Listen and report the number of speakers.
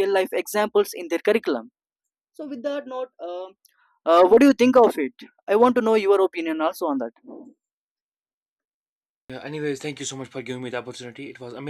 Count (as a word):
two